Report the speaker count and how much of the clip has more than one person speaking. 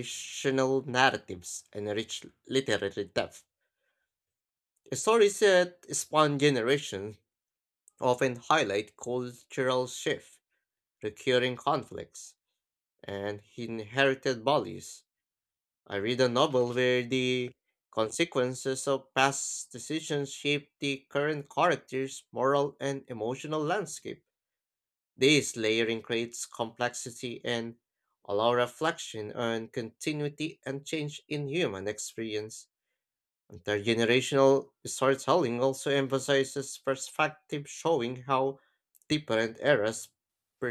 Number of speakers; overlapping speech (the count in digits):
1, no overlap